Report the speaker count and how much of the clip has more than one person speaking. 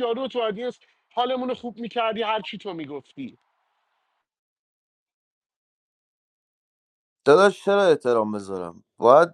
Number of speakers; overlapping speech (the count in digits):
2, no overlap